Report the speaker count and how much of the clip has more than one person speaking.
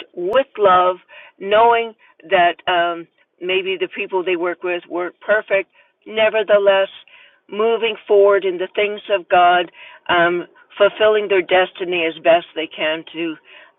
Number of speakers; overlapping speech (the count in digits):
1, no overlap